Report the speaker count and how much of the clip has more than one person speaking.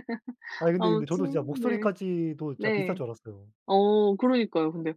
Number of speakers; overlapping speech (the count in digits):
2, about 30%